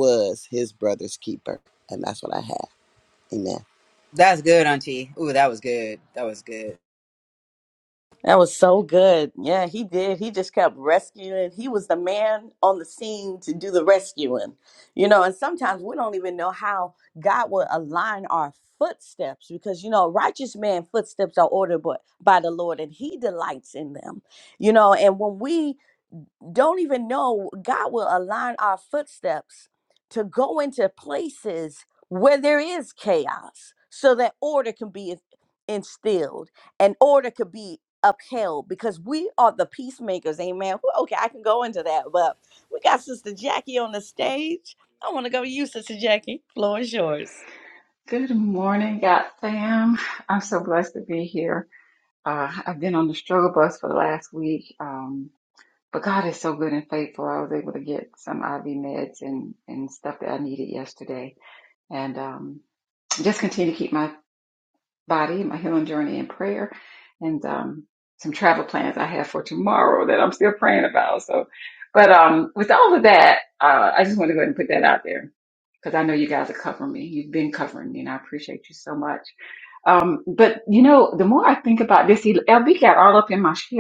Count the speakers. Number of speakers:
four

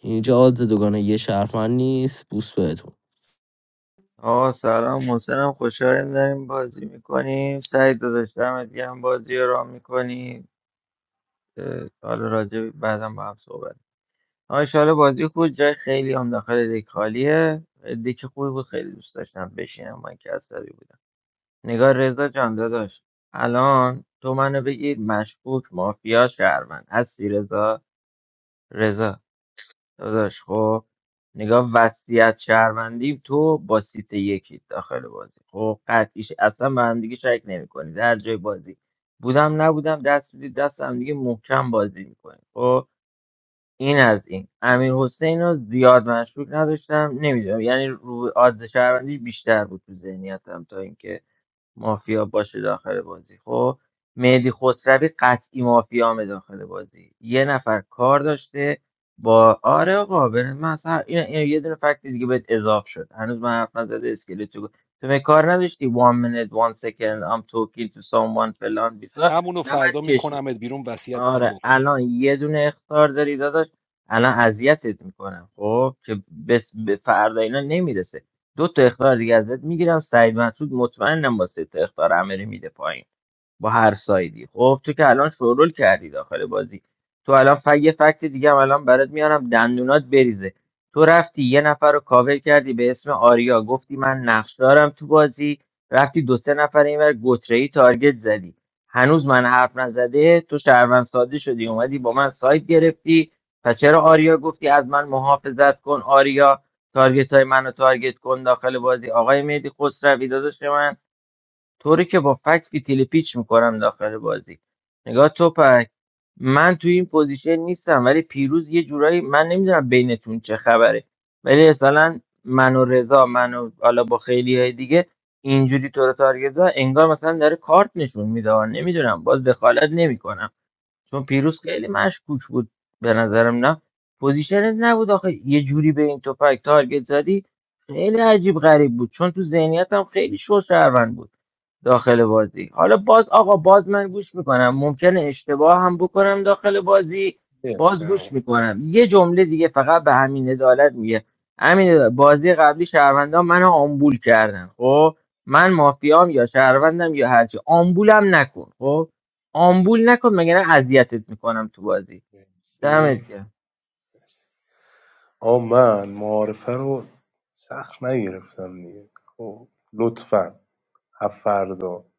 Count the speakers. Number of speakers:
four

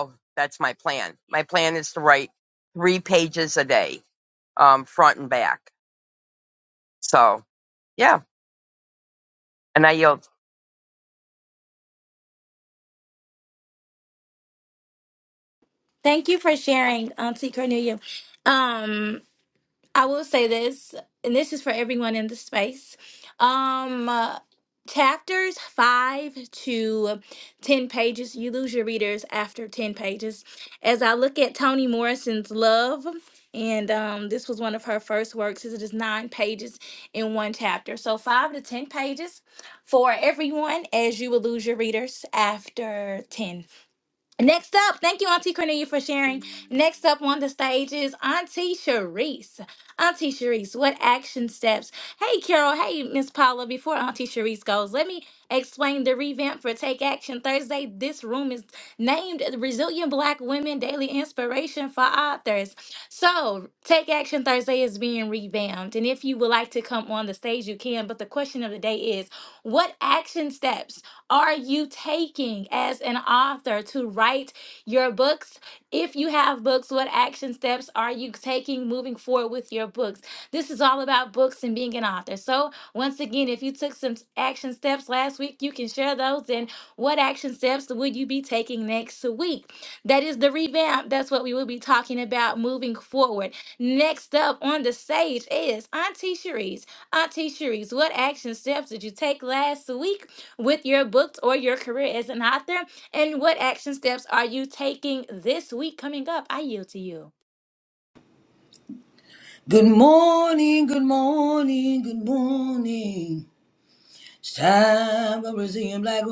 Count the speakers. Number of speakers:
three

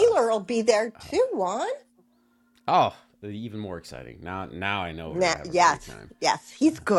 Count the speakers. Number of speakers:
two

